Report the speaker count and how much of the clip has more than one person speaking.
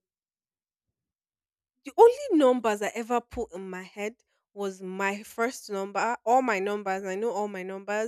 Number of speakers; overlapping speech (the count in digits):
1, no overlap